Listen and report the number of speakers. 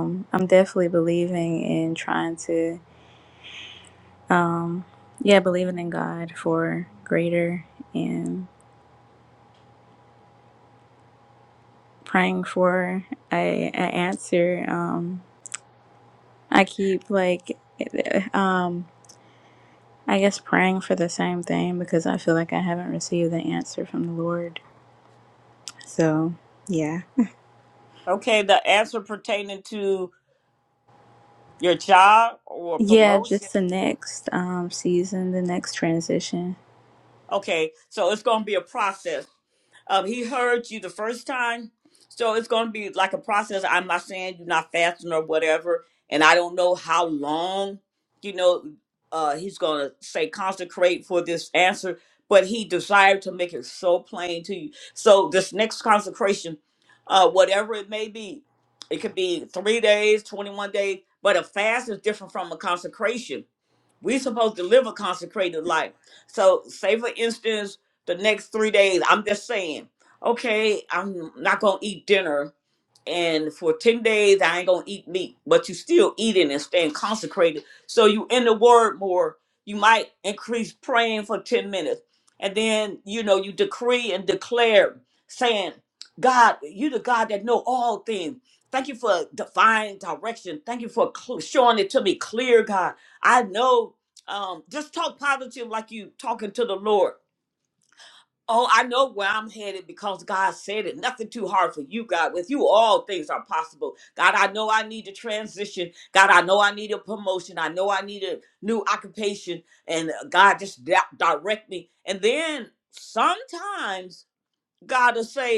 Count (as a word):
two